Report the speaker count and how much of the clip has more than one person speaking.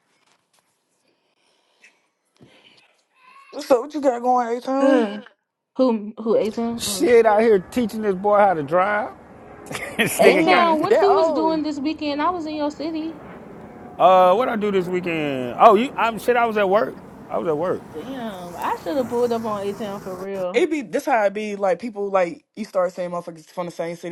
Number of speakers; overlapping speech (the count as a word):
three, about 10%